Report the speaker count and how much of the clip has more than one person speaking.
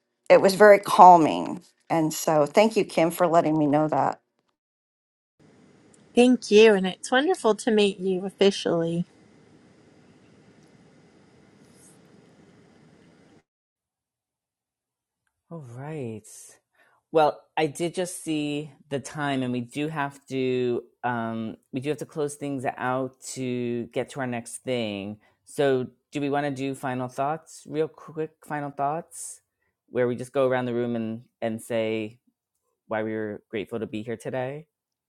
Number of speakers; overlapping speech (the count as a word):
three, no overlap